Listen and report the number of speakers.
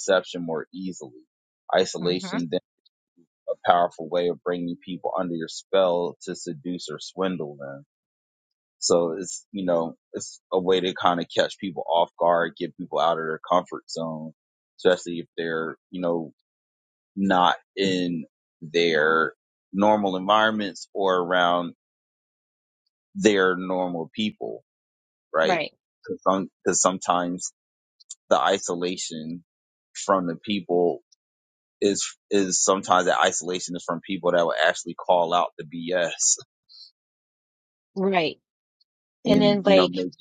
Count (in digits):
2